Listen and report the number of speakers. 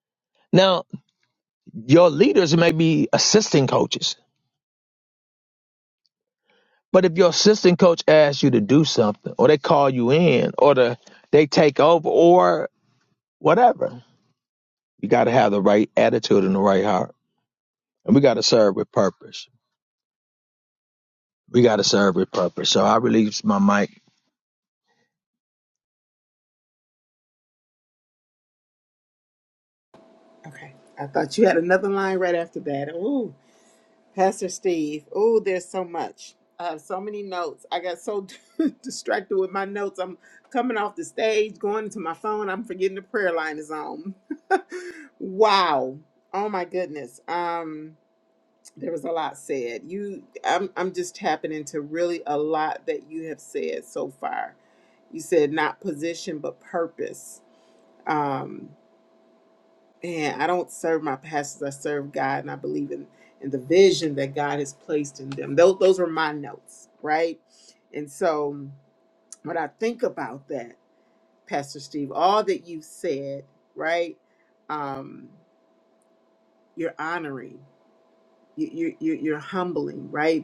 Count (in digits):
2